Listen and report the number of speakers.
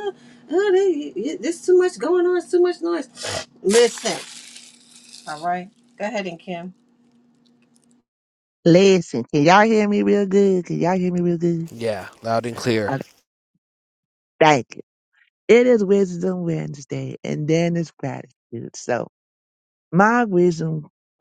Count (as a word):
three